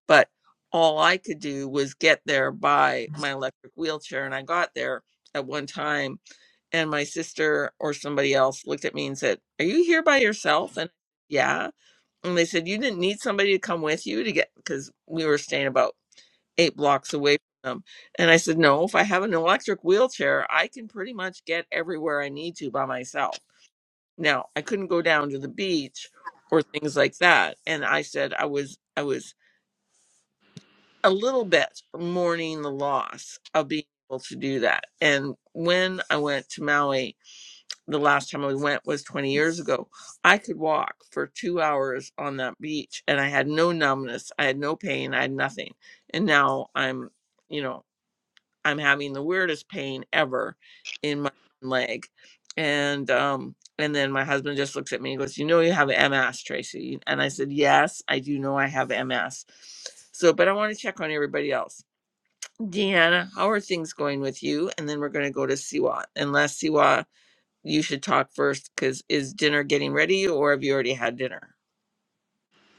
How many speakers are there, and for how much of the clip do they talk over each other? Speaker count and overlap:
one, no overlap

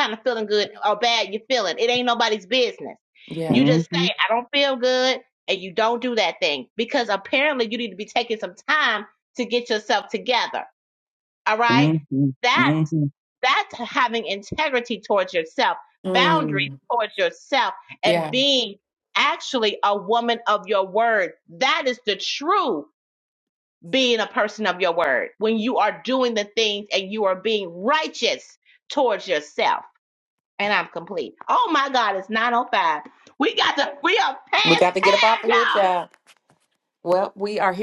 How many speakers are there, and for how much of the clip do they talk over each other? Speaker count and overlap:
three, about 9%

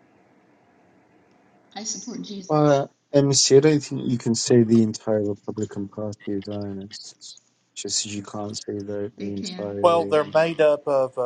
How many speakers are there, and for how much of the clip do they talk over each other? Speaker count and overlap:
three, about 12%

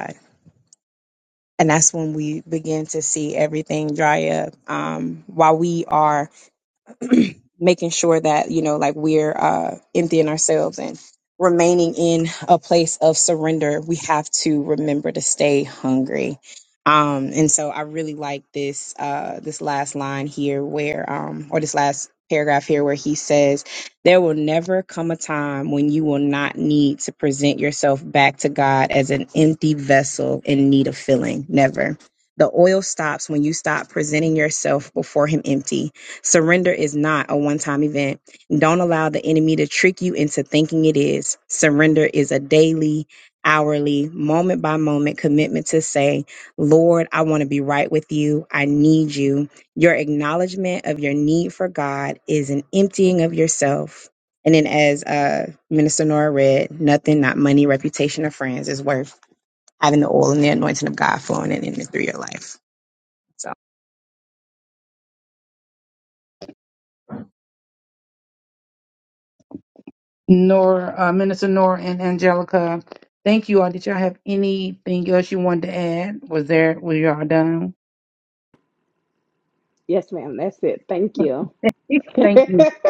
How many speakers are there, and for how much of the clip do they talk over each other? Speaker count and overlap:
three, no overlap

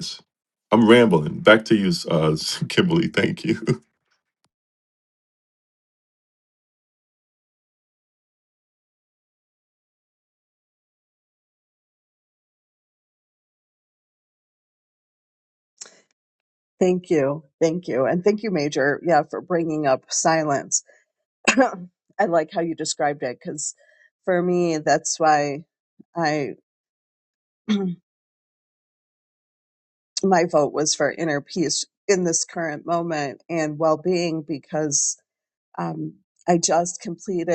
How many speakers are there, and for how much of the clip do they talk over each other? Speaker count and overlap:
two, no overlap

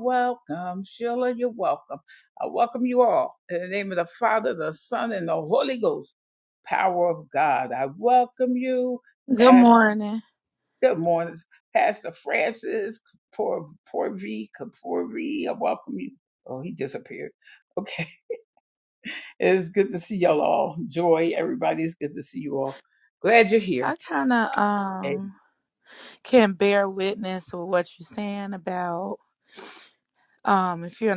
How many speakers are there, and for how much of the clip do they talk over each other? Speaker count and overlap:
two, under 1%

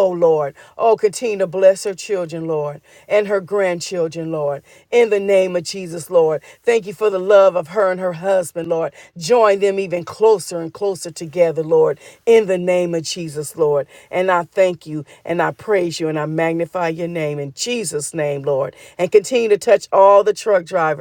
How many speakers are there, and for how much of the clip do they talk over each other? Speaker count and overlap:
one, no overlap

